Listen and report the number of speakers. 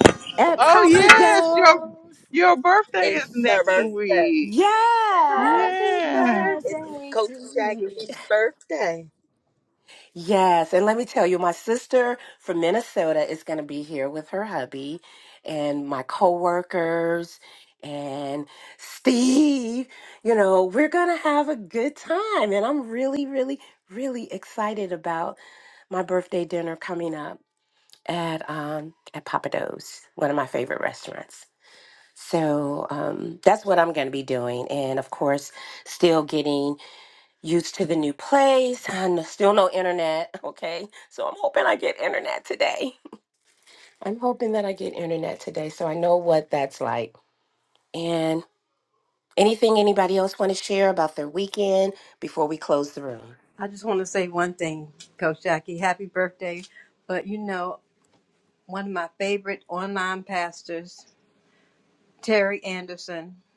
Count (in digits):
4